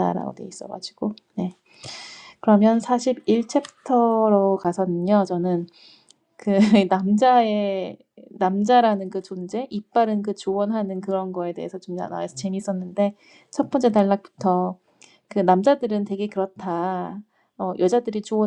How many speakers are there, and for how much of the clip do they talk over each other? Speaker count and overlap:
one, no overlap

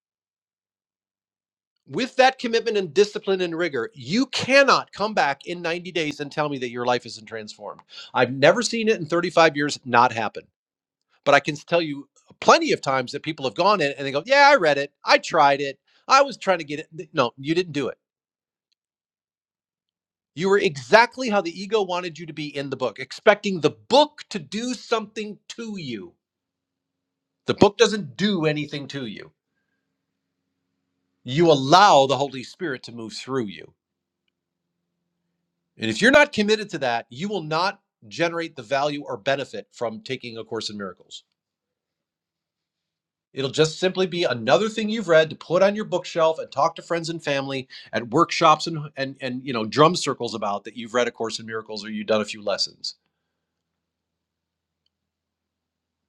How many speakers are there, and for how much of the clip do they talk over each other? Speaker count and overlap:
one, no overlap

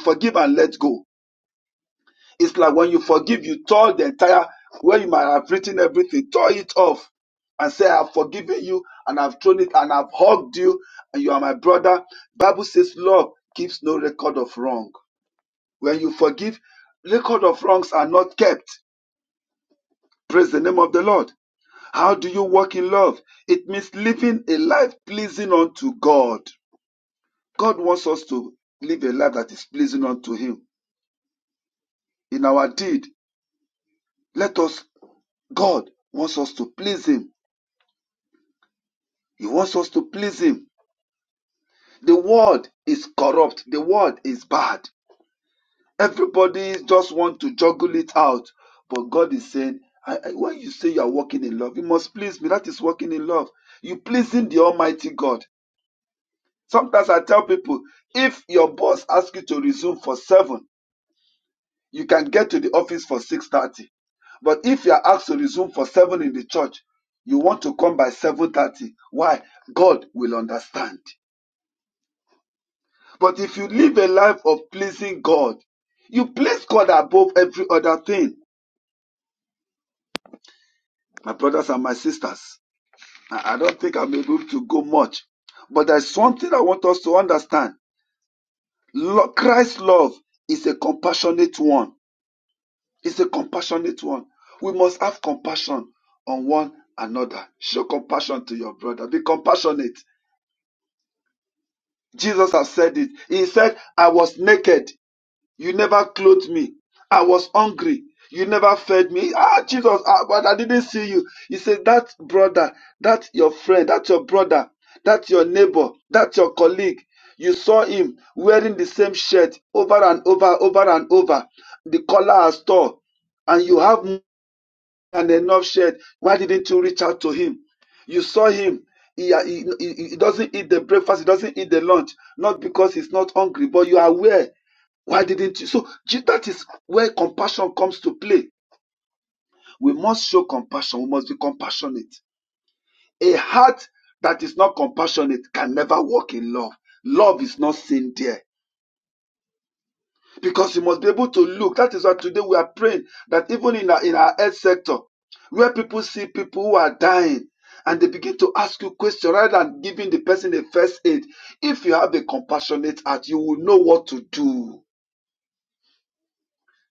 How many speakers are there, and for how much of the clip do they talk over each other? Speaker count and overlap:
one, no overlap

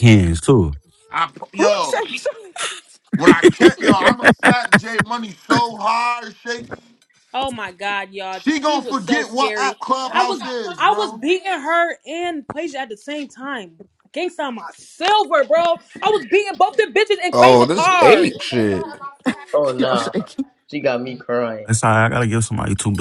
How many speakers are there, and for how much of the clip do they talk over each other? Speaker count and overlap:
six, about 19%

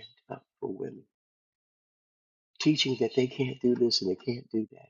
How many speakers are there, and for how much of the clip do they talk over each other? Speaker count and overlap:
one, no overlap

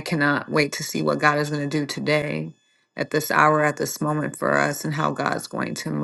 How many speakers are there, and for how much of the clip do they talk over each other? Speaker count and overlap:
one, no overlap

